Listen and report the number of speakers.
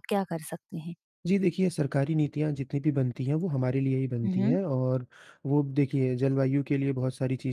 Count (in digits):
2